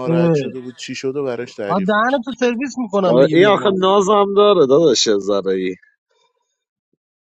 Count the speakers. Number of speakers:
3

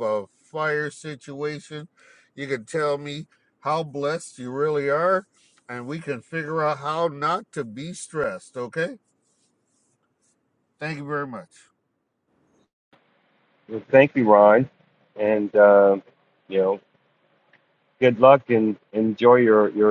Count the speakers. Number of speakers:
2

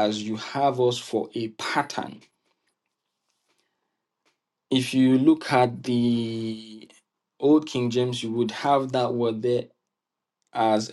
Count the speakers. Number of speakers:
1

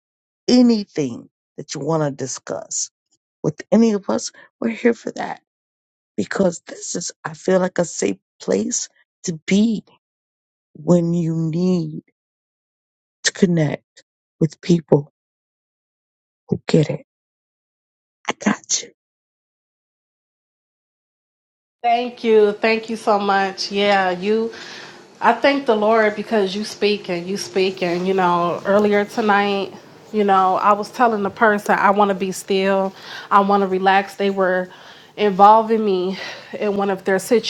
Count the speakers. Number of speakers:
2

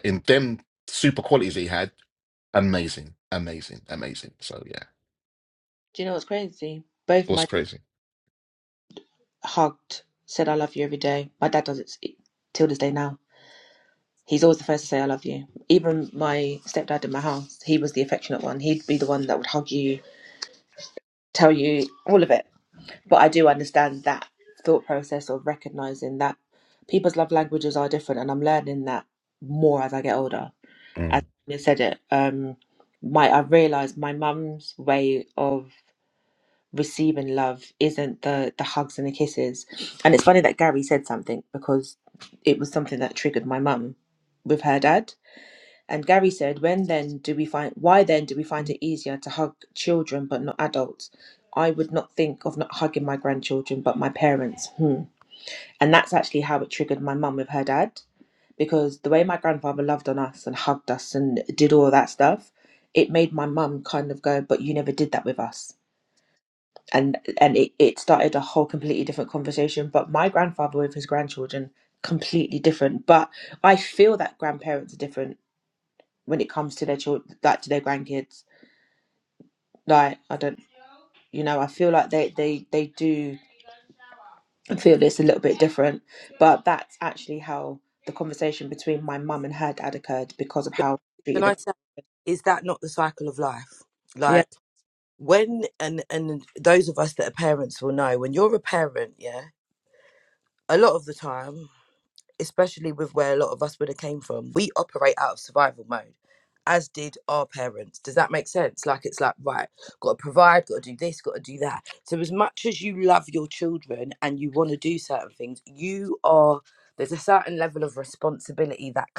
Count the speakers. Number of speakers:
3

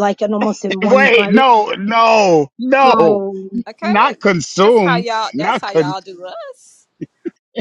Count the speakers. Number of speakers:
3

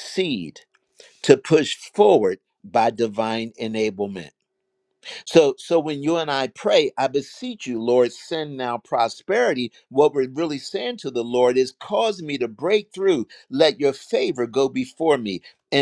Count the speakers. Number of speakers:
1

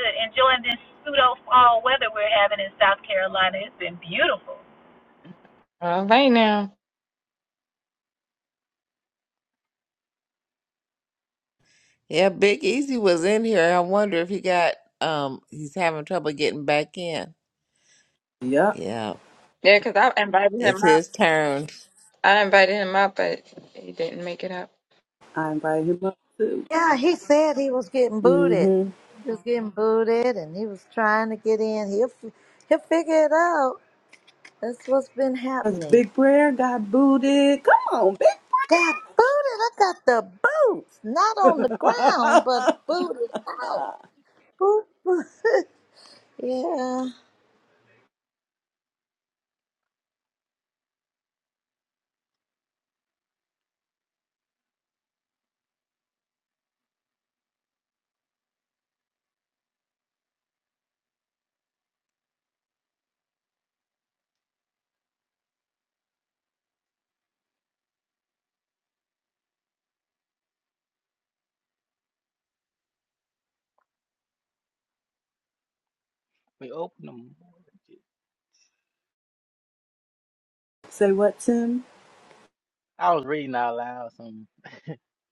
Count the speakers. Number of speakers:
6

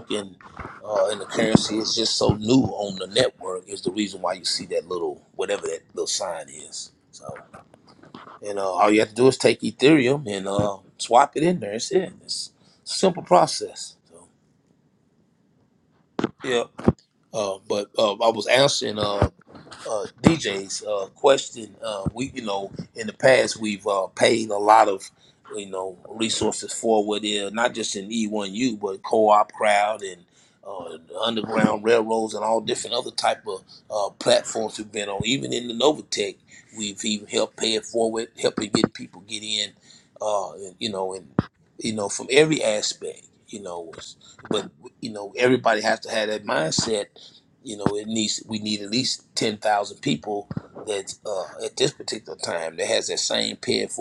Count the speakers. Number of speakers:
1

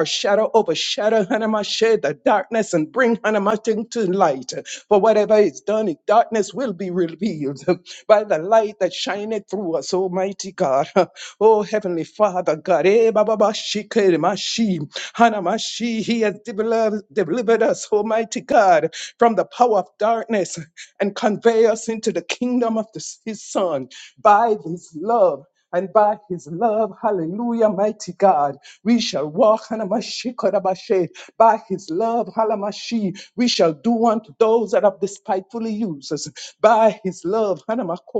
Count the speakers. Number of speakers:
1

